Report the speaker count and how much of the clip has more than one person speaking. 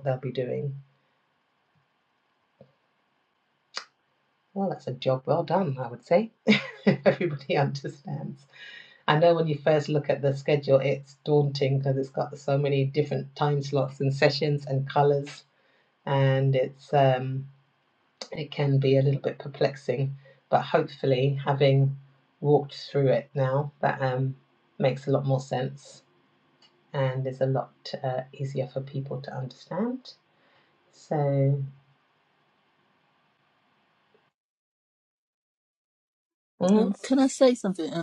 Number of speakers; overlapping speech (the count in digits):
2, about 1%